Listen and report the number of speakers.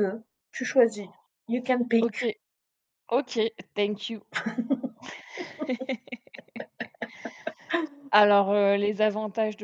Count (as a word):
two